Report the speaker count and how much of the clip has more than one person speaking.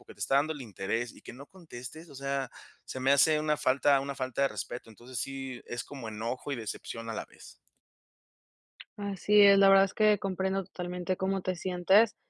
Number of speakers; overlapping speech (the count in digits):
2, no overlap